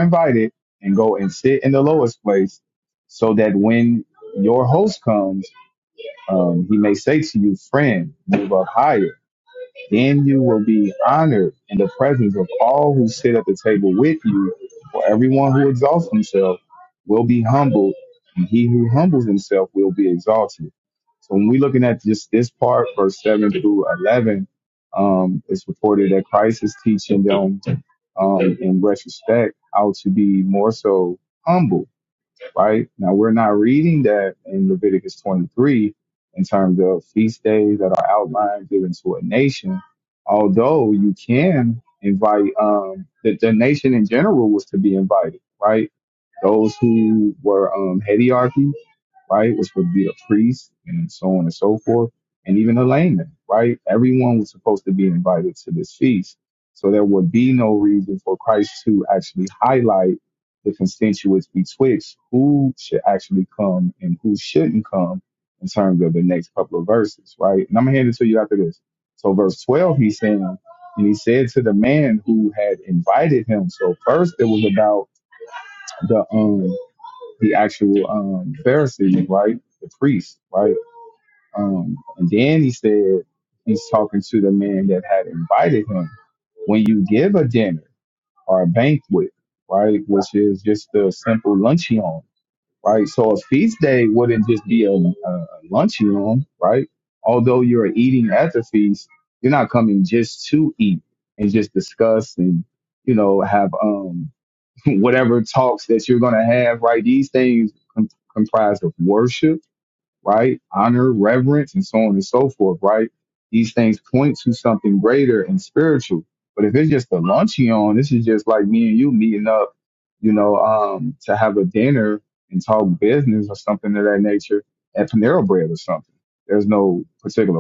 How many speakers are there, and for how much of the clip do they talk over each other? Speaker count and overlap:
1, no overlap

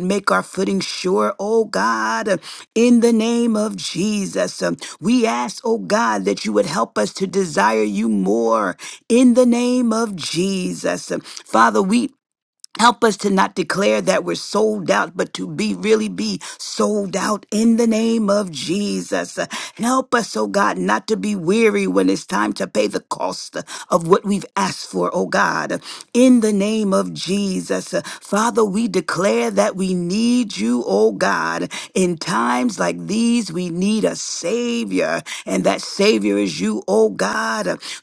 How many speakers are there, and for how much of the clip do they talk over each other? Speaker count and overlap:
1, no overlap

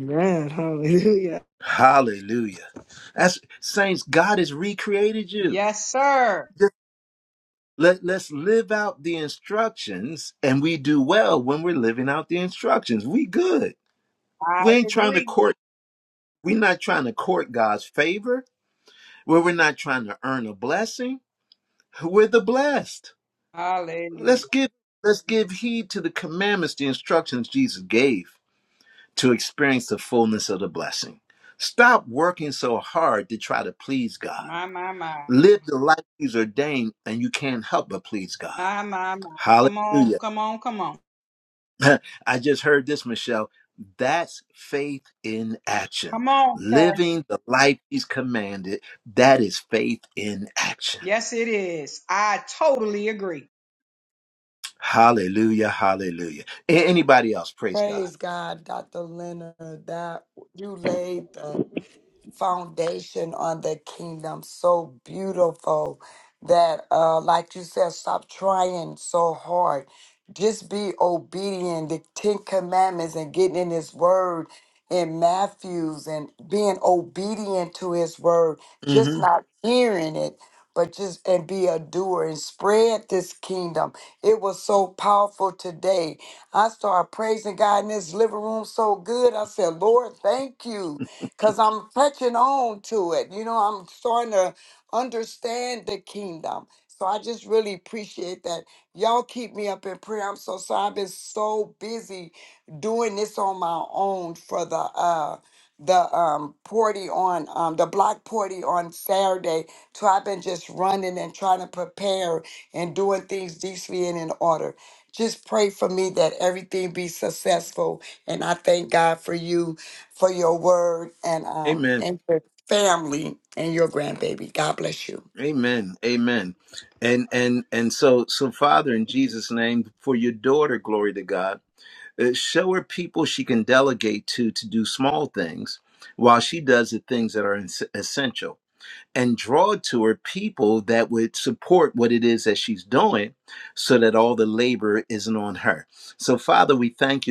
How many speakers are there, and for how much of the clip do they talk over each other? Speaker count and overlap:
4, about 2%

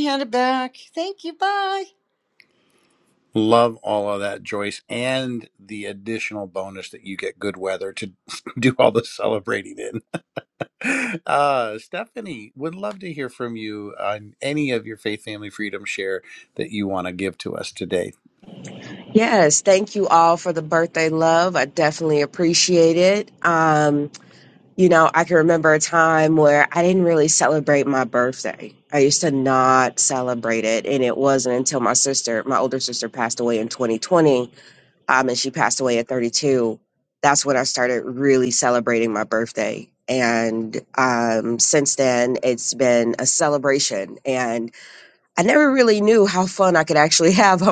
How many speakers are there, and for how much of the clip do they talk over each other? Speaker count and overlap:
3, no overlap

